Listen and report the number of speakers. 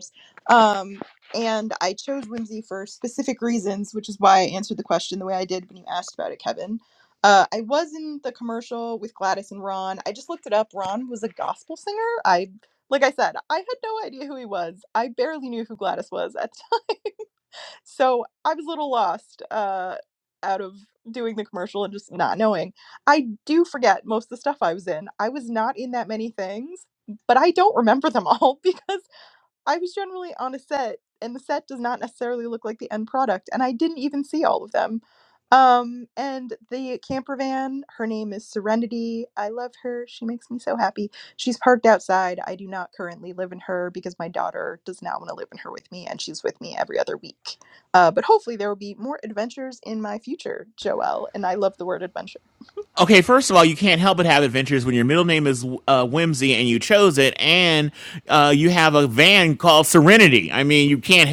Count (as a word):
two